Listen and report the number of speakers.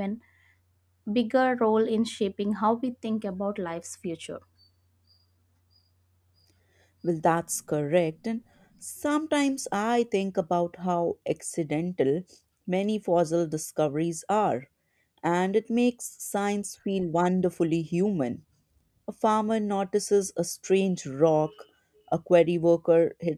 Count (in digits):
2